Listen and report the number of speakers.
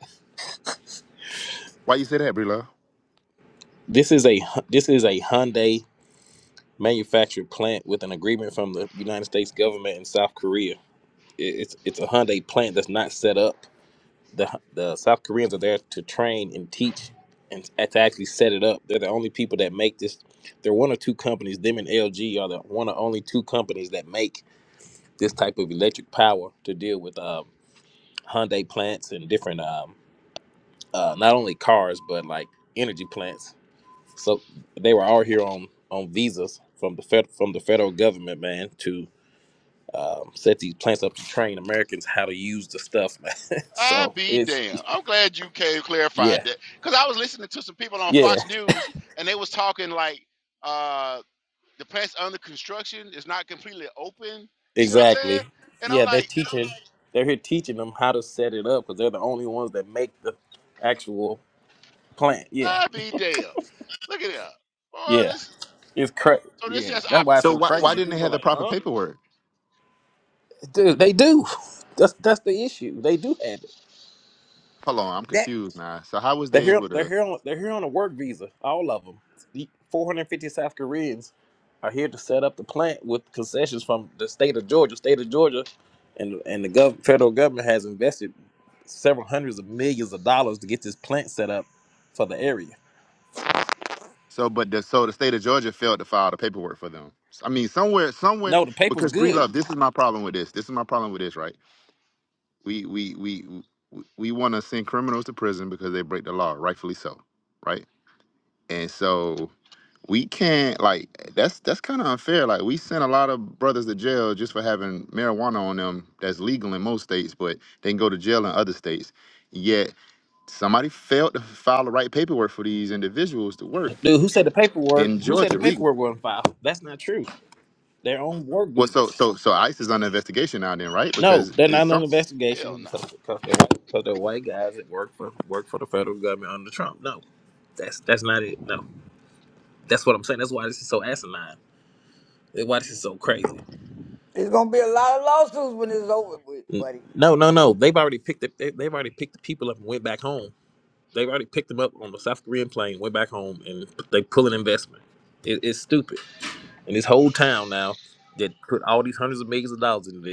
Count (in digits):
4